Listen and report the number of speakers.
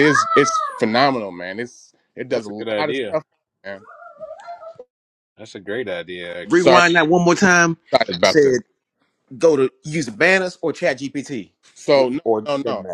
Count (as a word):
three